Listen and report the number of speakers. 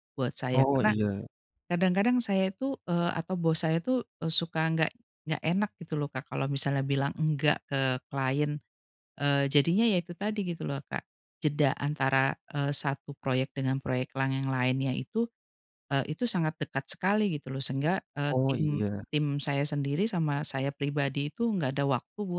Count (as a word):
two